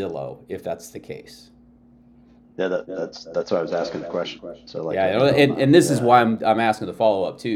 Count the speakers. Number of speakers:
two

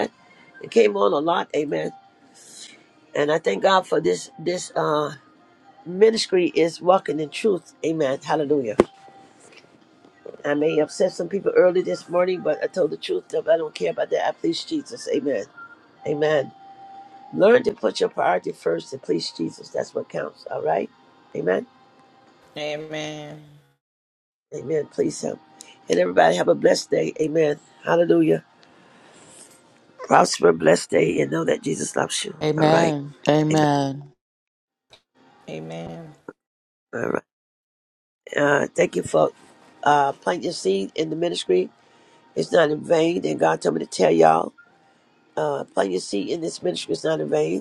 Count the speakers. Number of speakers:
three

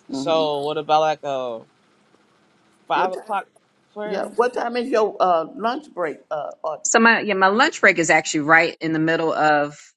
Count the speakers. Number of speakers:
three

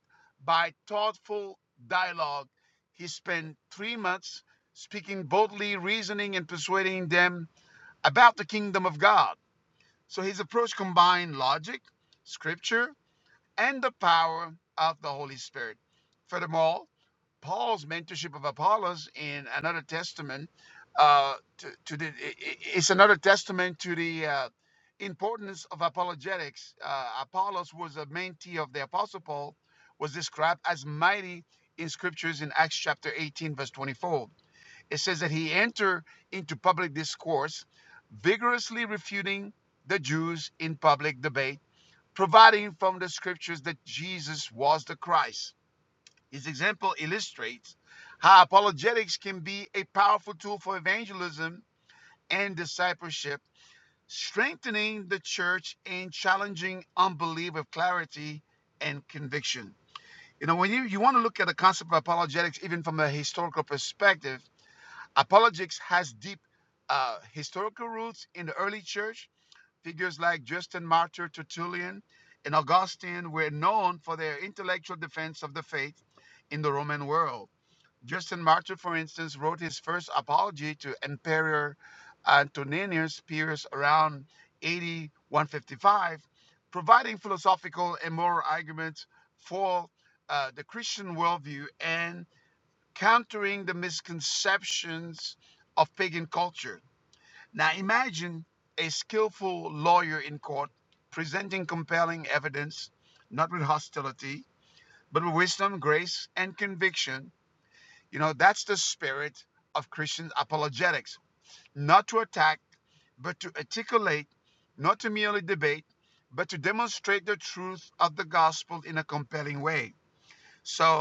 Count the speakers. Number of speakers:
one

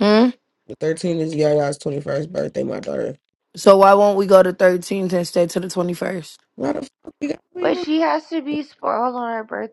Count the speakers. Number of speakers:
three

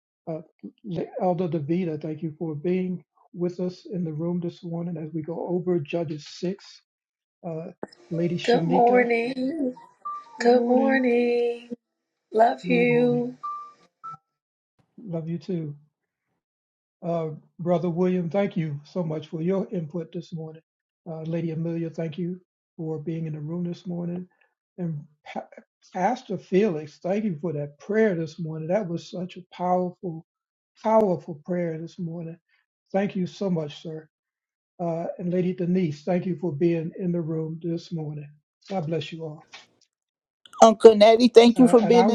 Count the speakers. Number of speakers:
three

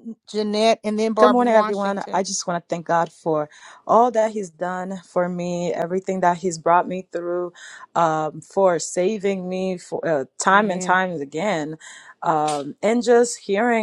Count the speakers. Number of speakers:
two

